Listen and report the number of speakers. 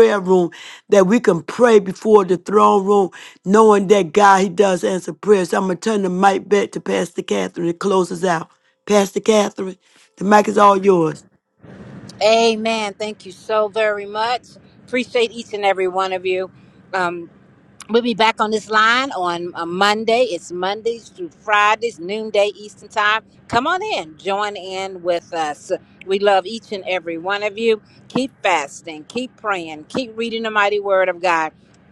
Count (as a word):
two